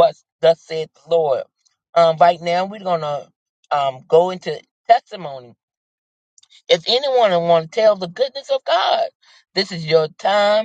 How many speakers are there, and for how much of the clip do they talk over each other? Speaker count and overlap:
1, no overlap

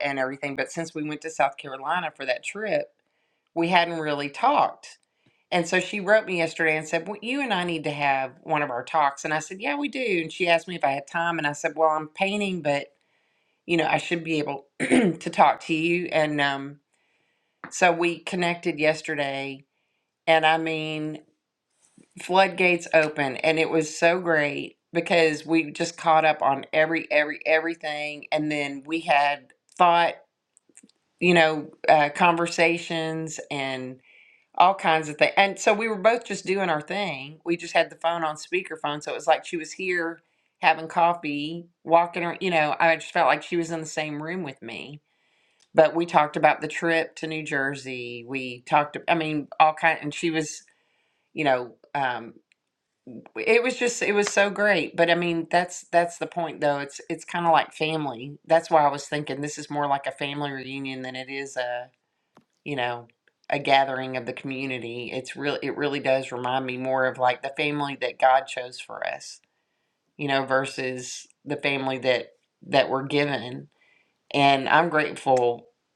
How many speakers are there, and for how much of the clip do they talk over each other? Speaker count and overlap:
1, no overlap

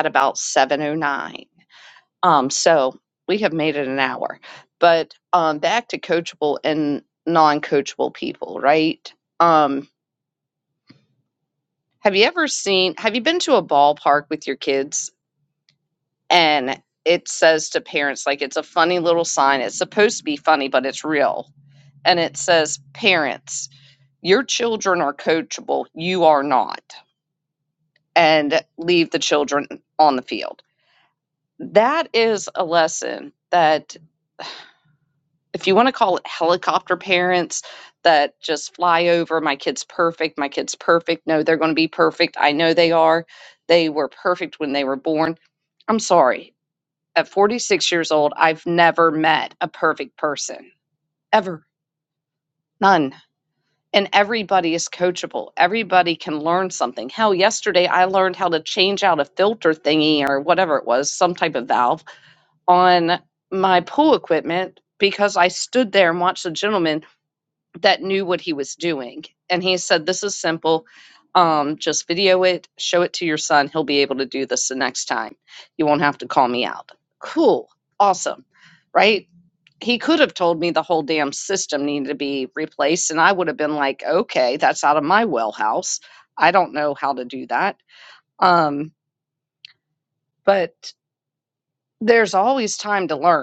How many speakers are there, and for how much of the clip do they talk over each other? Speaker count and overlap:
1, no overlap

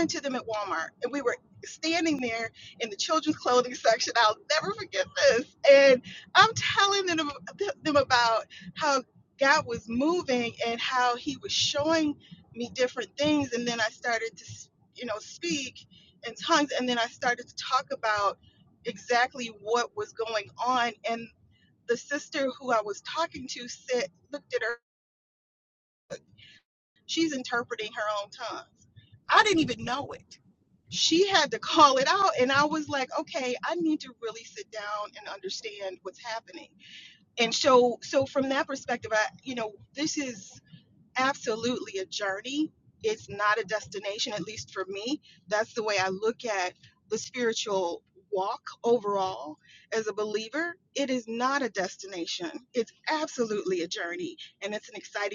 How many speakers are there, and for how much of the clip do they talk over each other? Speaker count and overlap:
1, no overlap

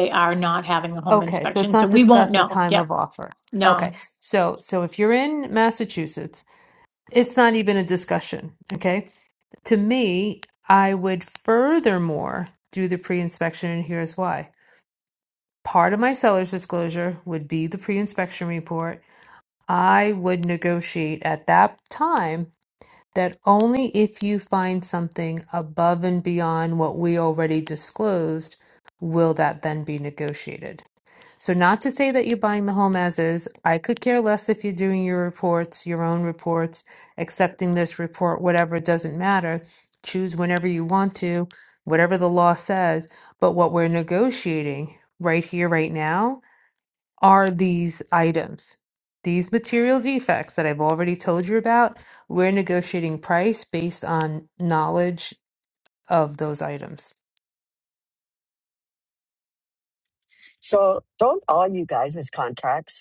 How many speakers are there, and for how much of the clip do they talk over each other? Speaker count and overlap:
3, about 3%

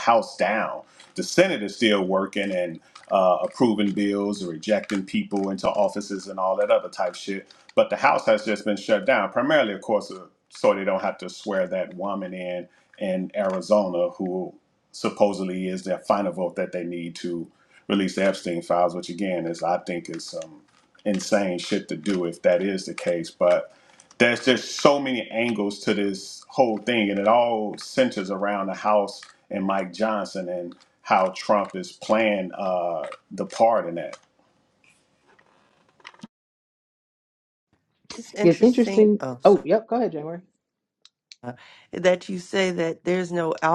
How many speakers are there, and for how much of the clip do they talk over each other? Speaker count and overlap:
3, about 3%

